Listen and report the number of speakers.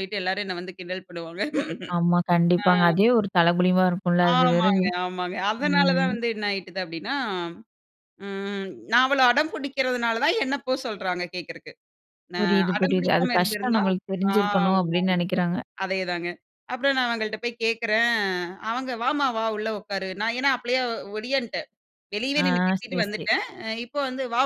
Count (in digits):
2